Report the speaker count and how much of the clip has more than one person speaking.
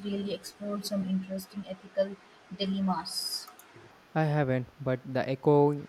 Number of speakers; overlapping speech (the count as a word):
two, no overlap